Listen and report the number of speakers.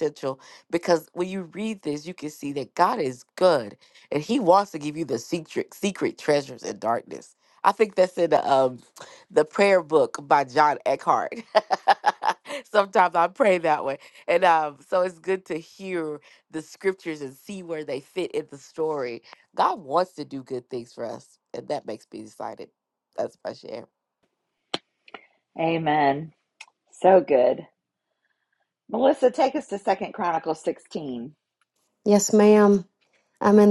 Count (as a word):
three